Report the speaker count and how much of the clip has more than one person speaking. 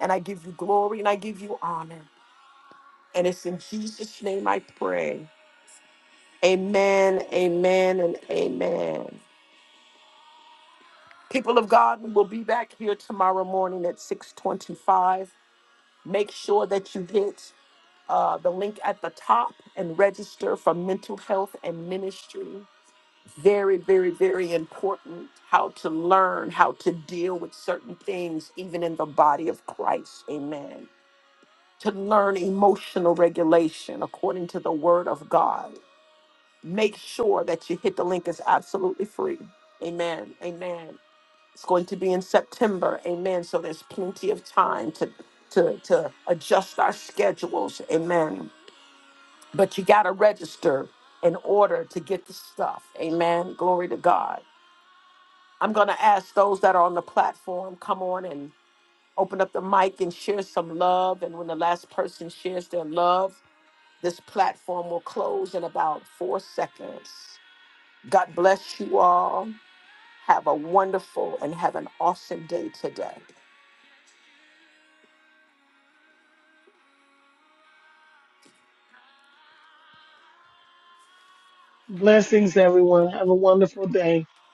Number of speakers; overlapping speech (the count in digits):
2, no overlap